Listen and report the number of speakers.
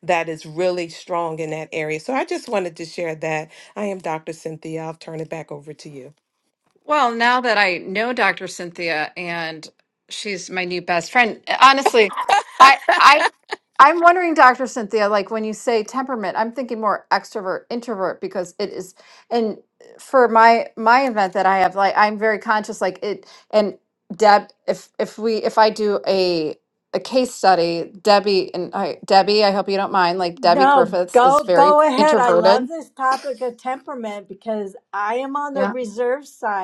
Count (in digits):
3